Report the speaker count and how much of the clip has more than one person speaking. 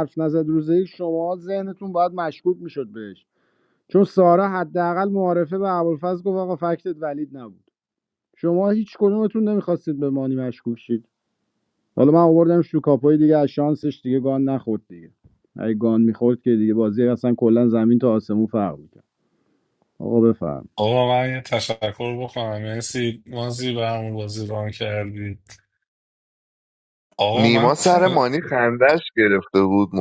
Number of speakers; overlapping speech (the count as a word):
three, about 3%